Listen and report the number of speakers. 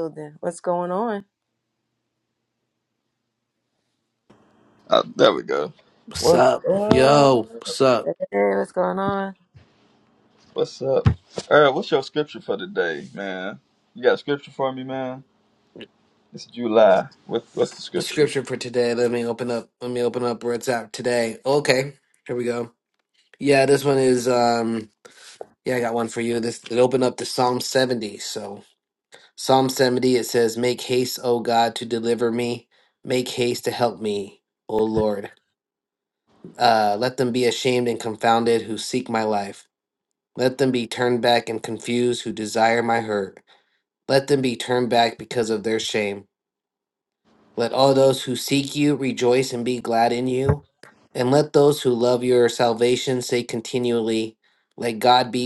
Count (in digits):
3